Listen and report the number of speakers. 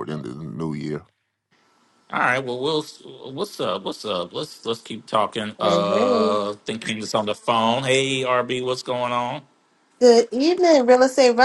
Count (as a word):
three